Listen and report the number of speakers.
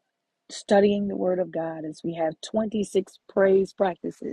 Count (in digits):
1